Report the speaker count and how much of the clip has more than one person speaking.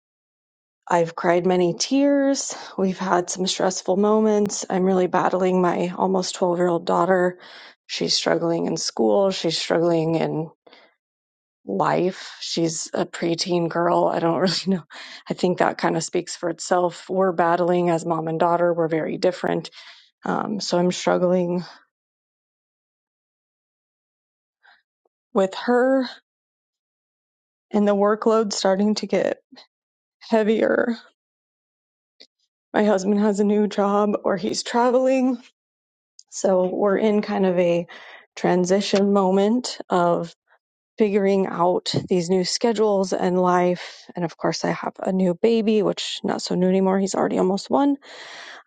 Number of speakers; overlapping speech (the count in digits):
1, no overlap